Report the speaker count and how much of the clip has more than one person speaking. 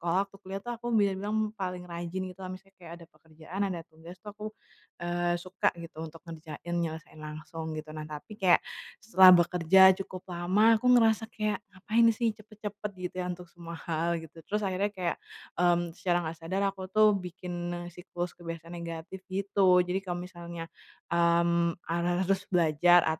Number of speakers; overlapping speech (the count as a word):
one, no overlap